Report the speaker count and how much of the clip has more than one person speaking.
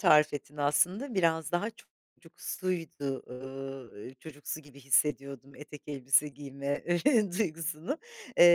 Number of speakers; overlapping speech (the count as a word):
one, no overlap